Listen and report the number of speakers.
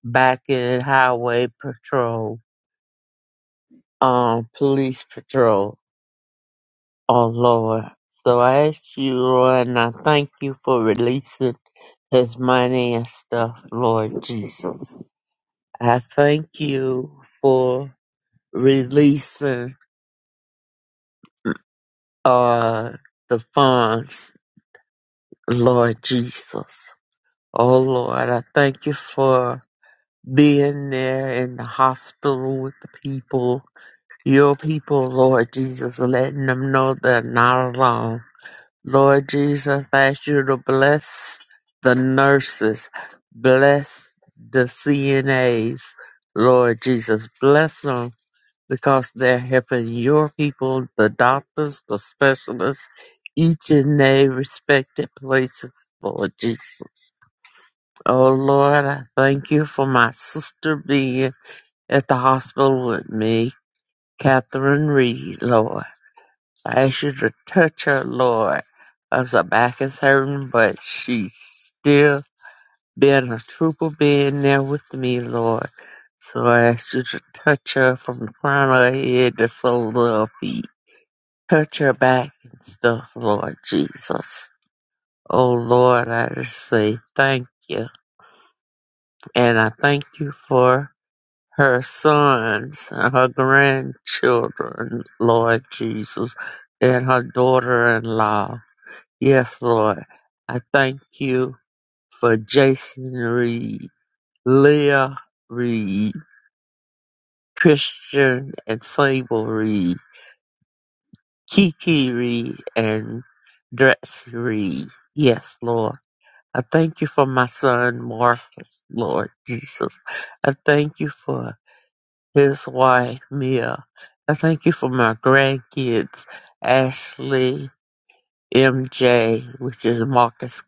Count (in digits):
1